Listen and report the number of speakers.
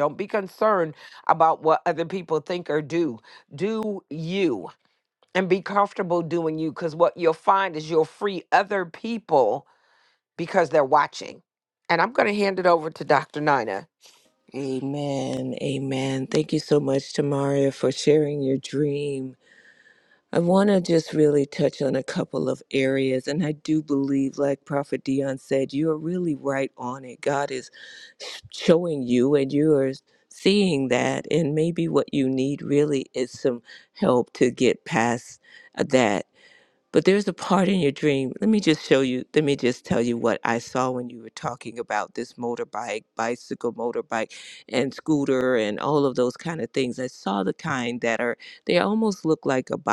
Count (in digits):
2